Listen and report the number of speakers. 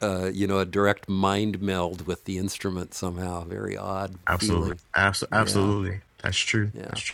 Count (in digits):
2